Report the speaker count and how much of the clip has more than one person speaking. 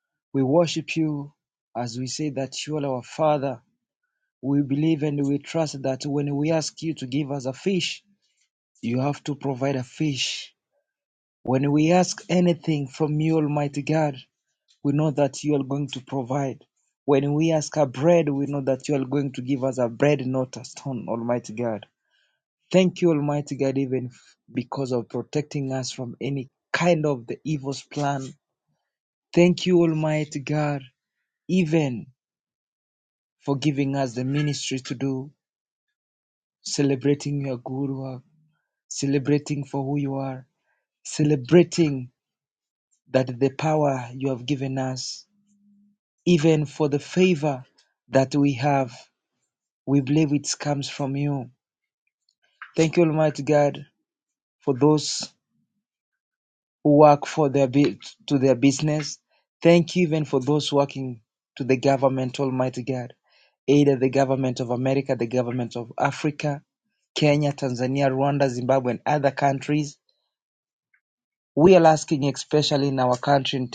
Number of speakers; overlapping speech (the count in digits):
1, no overlap